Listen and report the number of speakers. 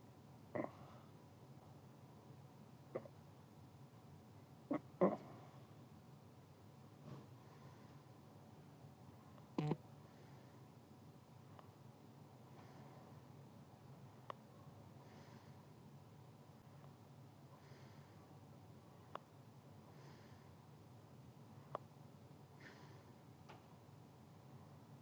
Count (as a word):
zero